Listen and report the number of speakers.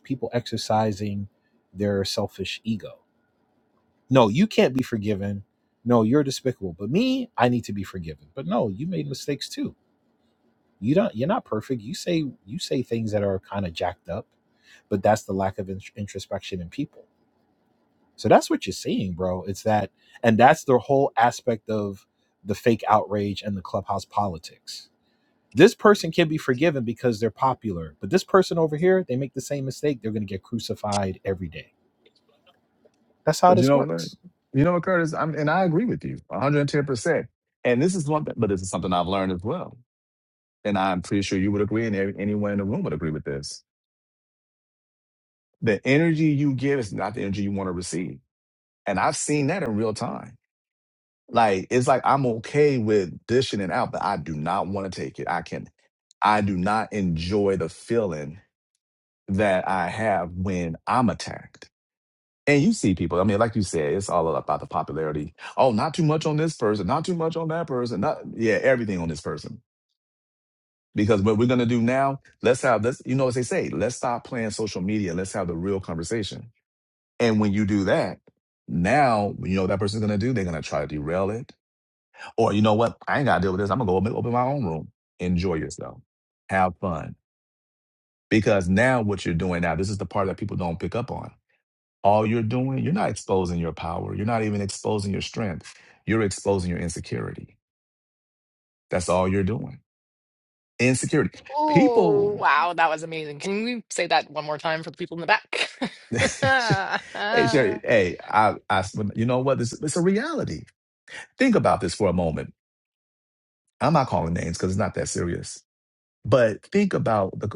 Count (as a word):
three